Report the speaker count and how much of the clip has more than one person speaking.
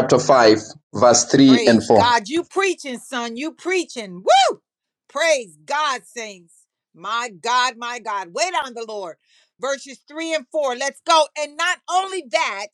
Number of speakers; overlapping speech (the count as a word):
two, about 4%